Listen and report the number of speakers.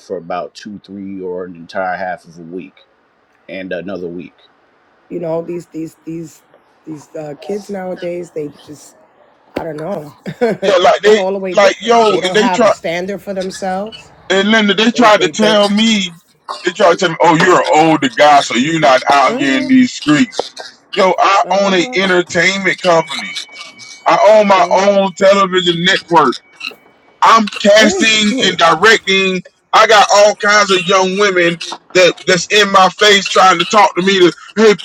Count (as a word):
three